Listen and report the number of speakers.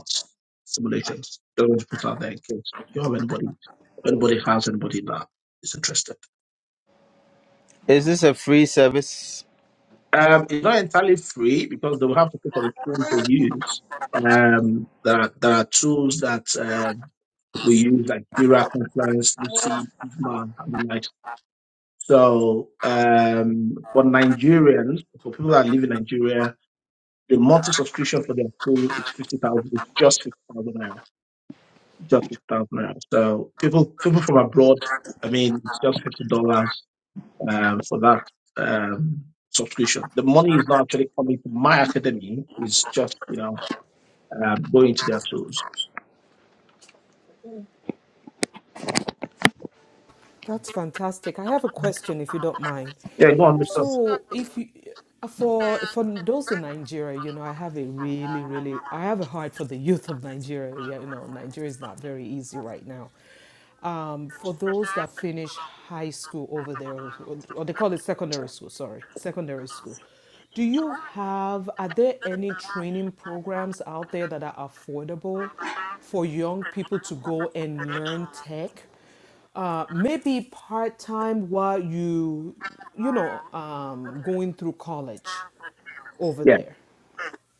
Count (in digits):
3